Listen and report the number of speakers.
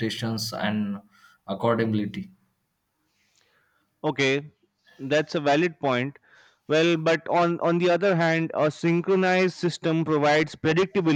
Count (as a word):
two